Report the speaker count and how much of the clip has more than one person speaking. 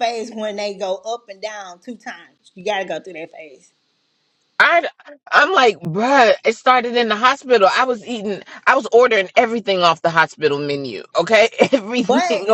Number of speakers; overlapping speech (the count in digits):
2, about 3%